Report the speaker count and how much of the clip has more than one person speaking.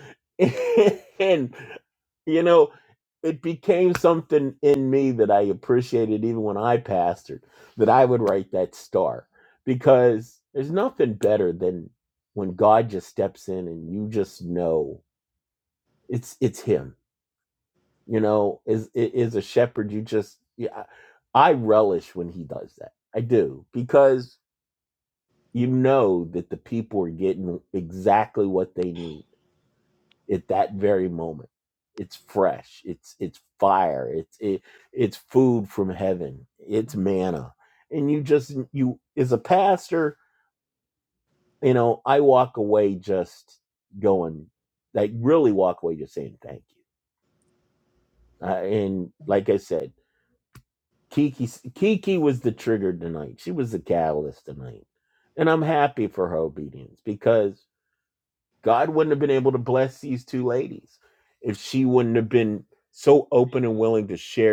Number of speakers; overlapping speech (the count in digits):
1, no overlap